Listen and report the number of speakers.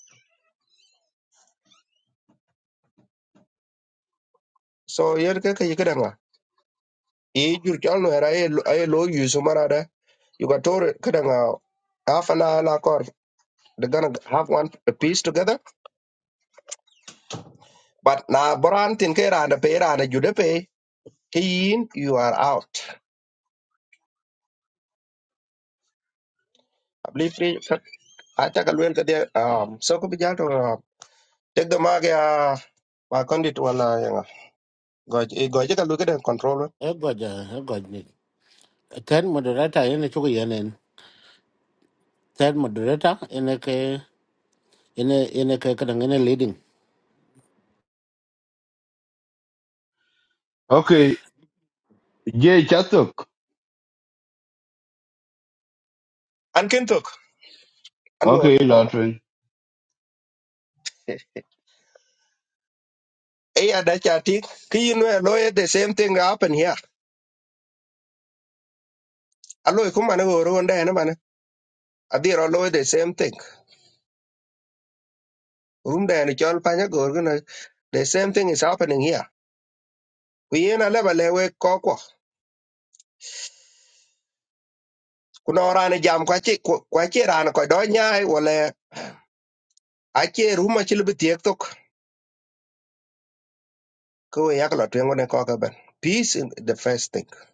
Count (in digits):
3